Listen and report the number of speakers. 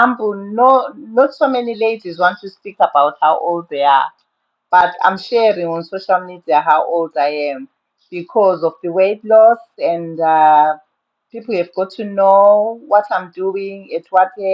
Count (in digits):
1